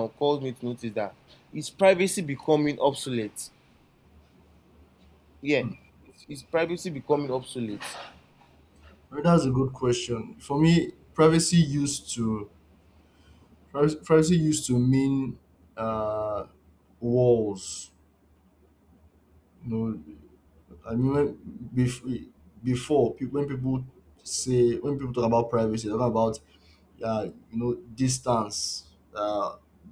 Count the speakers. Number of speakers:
2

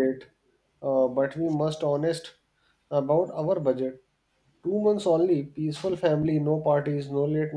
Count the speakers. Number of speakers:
1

